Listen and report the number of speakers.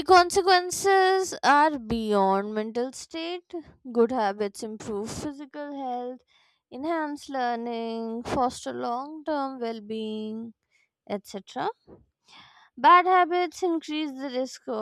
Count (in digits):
1